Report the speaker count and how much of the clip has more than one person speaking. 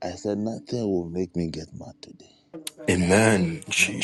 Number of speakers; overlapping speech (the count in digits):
2, about 6%